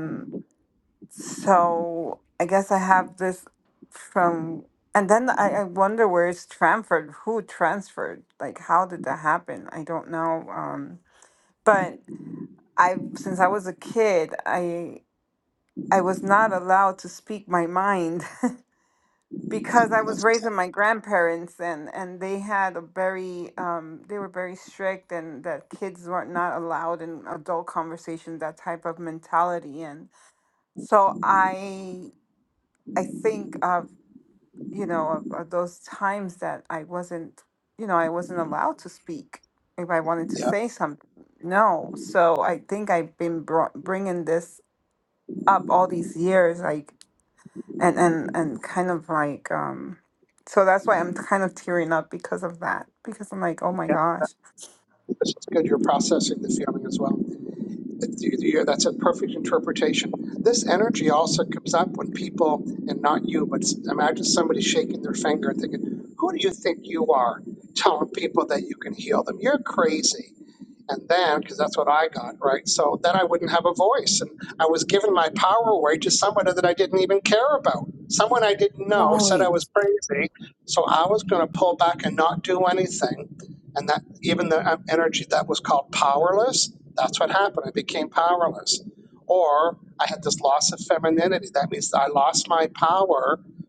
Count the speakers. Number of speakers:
2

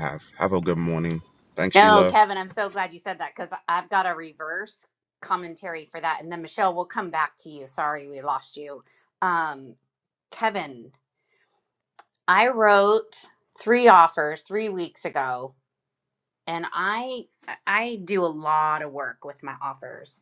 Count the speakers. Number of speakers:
2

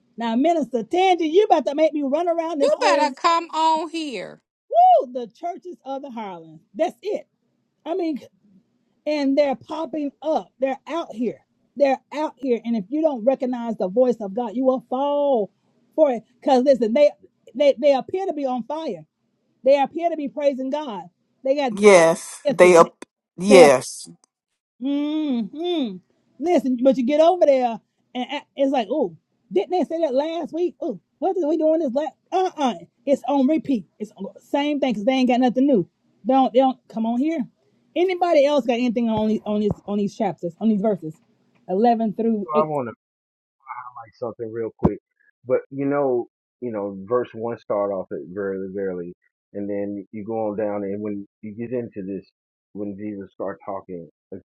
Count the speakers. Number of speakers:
4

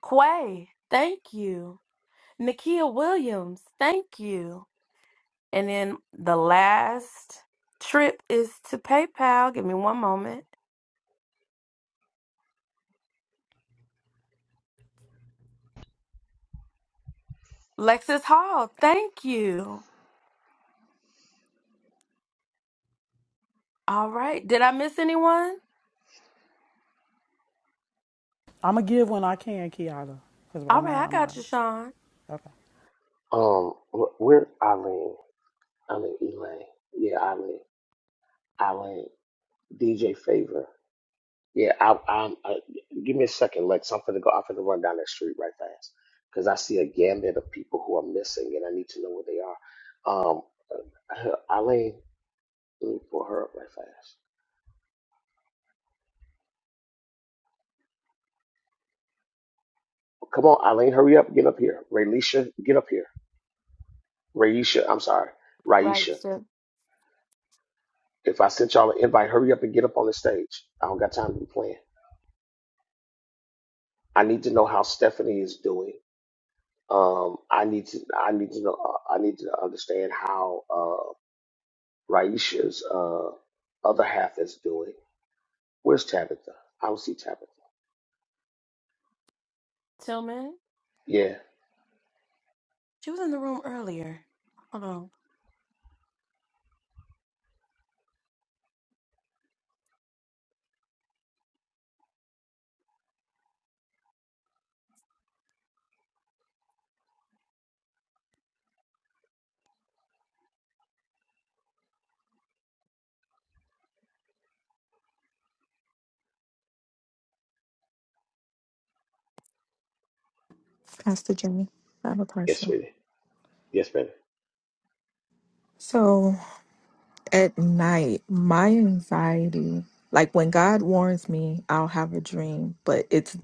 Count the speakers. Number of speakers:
4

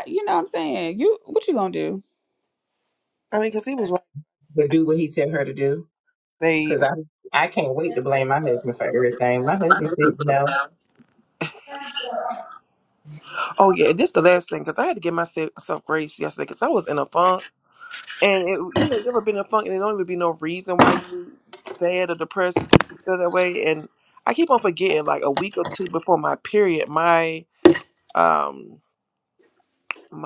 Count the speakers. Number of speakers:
3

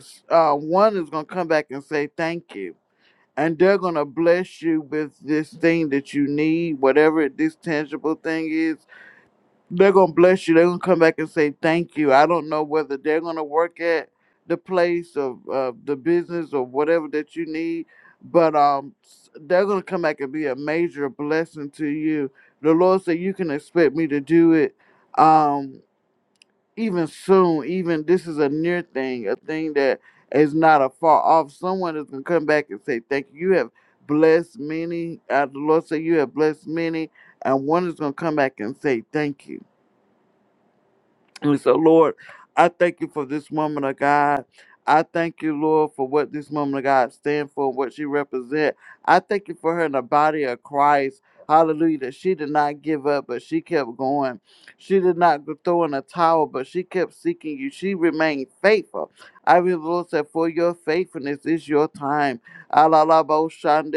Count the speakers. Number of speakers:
1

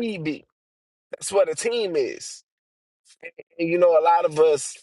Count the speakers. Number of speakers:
1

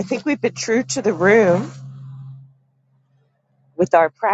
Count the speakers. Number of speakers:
1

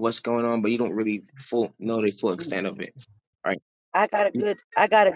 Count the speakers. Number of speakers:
2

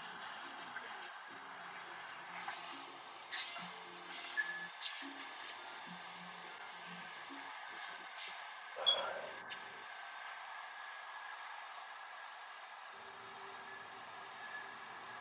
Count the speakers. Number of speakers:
0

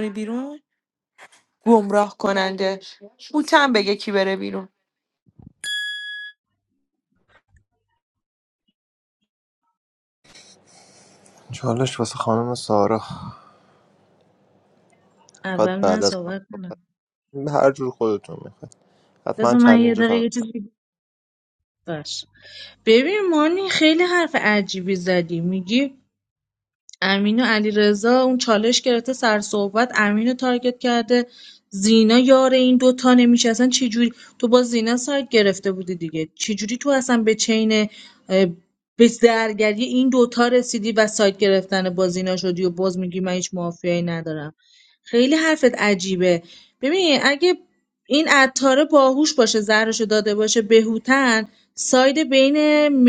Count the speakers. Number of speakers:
3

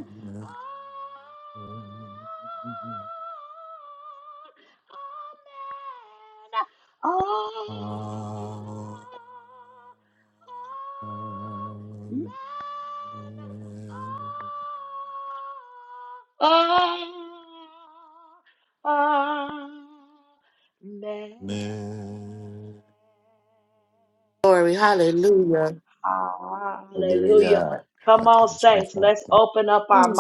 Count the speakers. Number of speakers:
3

